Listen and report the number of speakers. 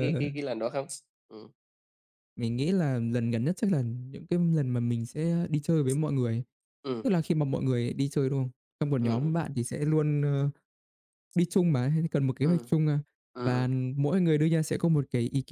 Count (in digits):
2